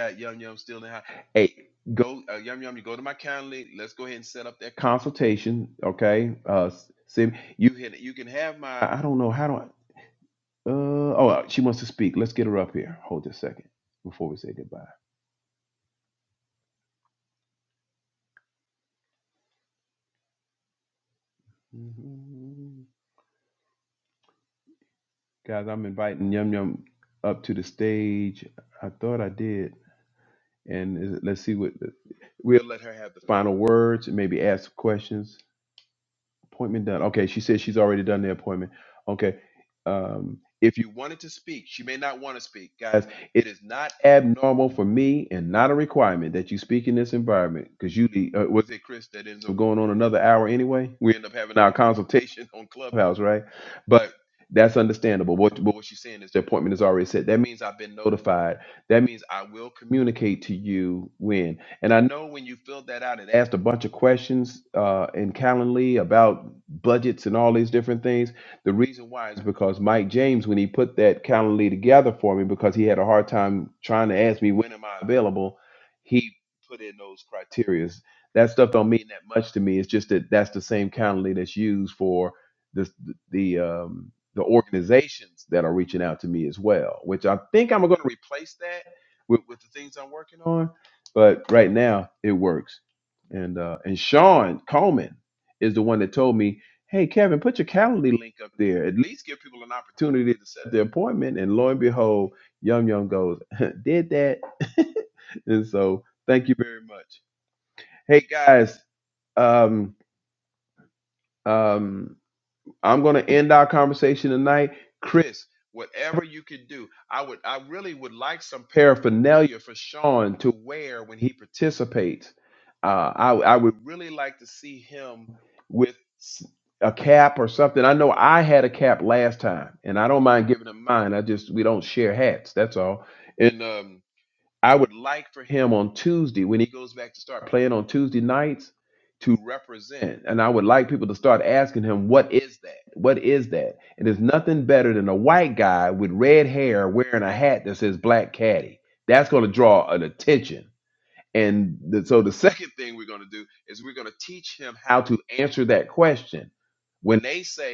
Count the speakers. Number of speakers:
1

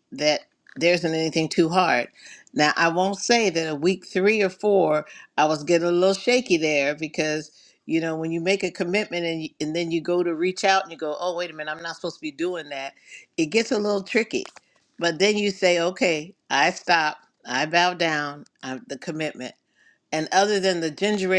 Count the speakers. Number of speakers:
1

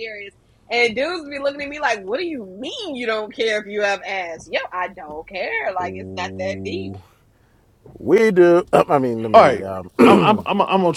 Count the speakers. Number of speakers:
3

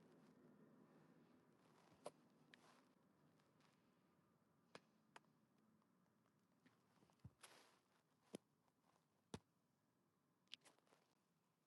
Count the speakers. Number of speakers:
0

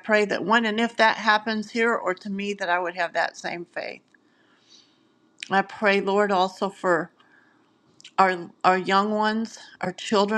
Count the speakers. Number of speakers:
1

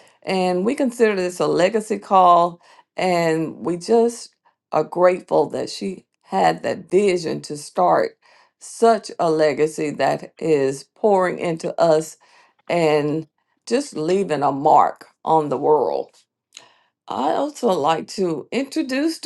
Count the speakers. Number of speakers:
1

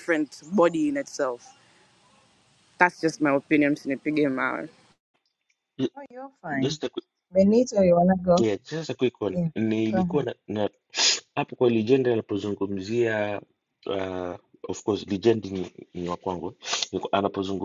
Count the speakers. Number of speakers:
3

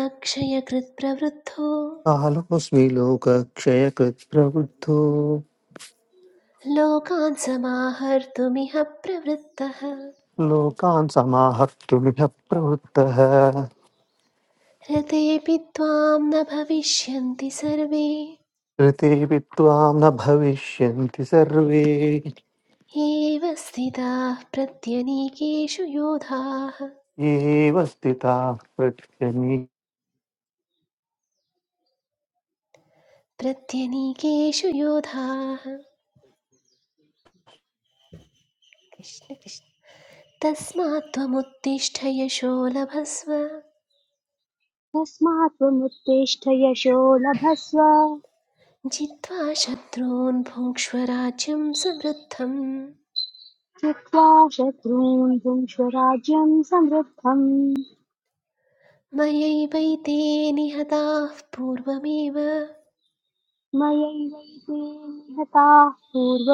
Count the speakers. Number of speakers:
3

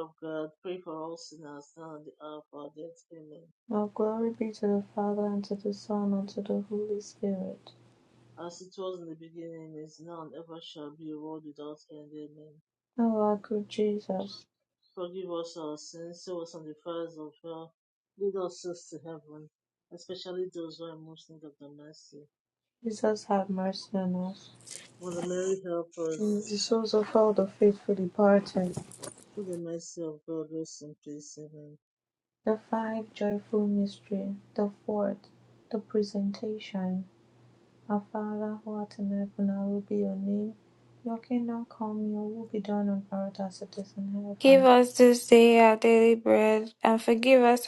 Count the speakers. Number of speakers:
3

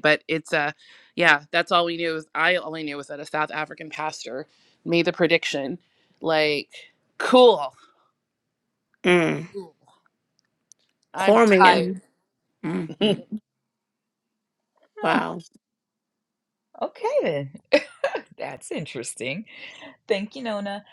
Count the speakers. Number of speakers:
3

